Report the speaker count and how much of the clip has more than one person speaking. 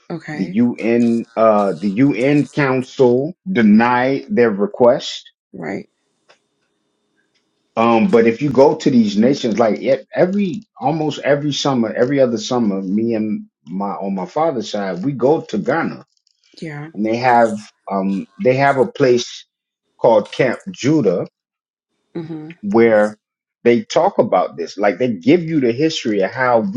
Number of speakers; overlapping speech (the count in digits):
2, about 1%